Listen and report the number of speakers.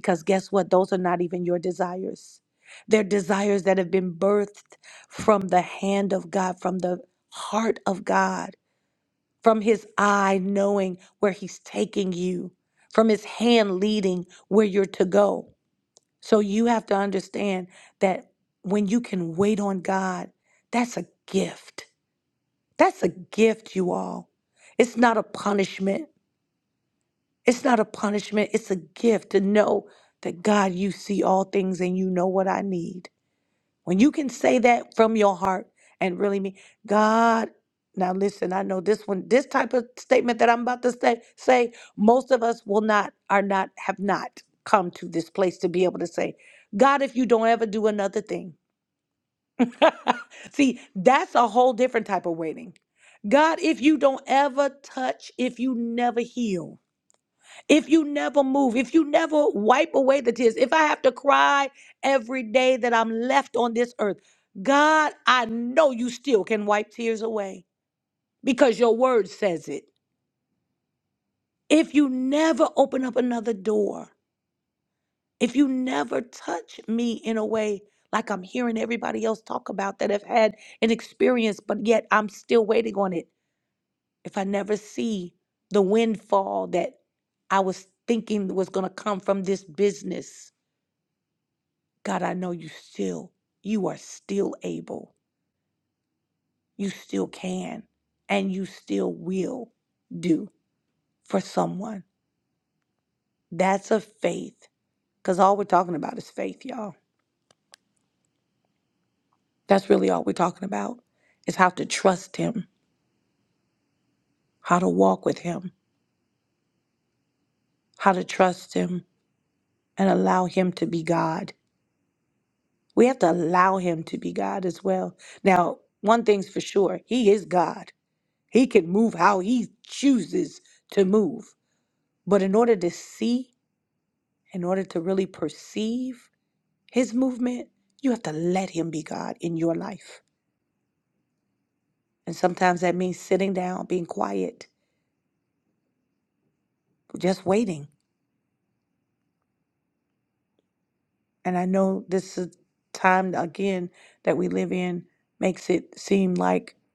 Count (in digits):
1